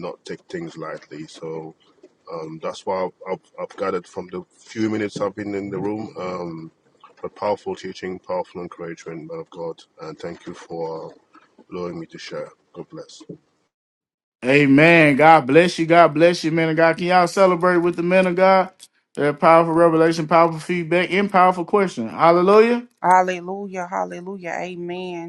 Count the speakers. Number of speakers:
3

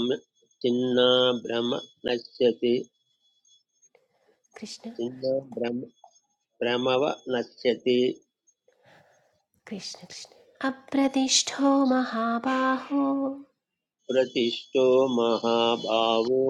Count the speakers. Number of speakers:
2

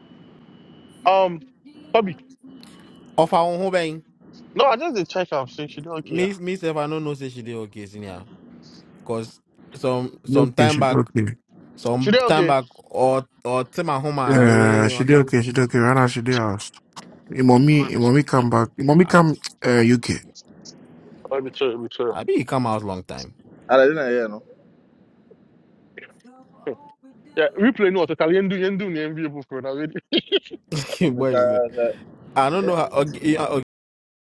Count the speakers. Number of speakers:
4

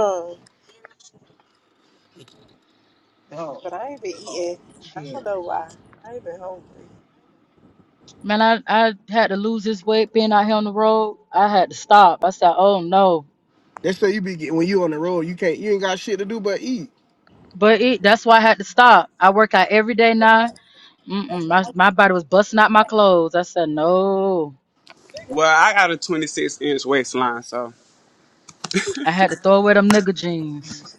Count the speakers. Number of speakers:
4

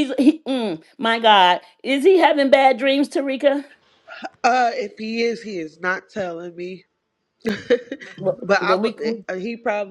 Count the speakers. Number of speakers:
2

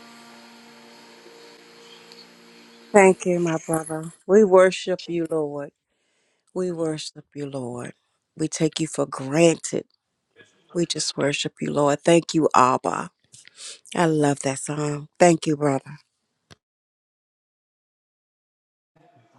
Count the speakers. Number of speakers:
1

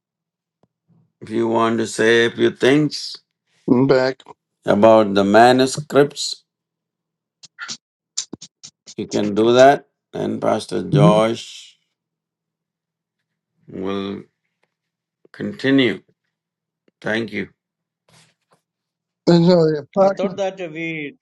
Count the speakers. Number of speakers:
3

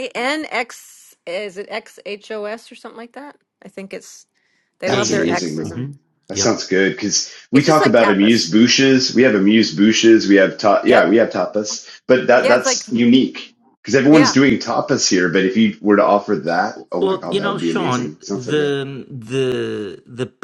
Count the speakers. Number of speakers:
3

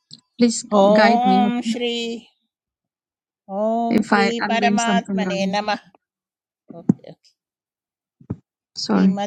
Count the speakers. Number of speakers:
2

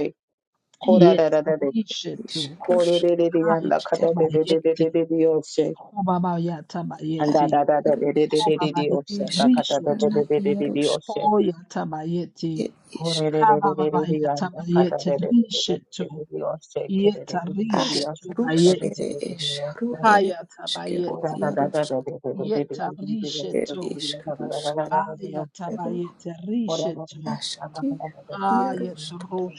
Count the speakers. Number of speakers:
3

